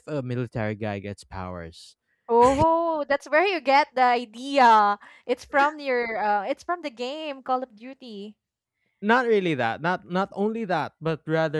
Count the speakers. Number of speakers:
2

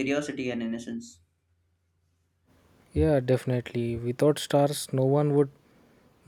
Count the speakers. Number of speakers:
2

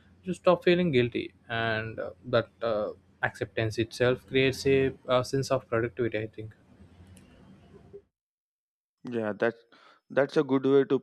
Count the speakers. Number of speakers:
2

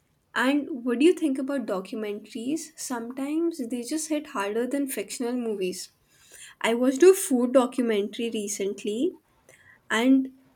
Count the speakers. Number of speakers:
1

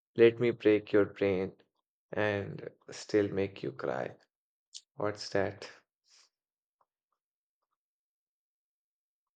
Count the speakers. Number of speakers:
1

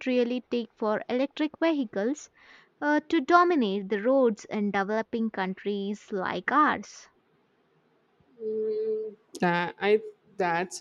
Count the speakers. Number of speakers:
2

